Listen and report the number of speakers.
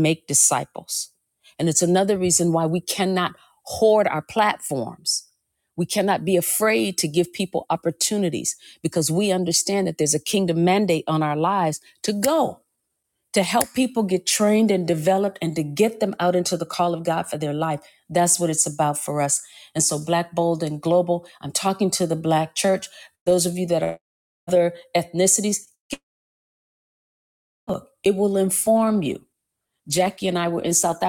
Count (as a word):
one